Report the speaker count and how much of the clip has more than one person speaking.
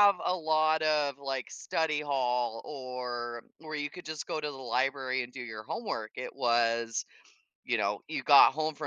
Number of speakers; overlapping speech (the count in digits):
1, no overlap